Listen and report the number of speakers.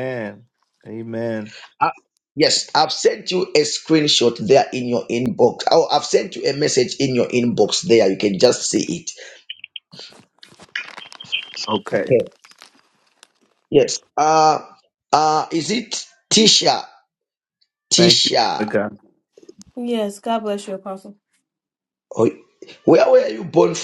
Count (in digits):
3